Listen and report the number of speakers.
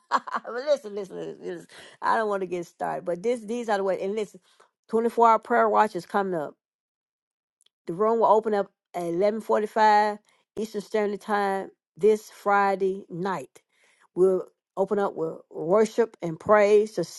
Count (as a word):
one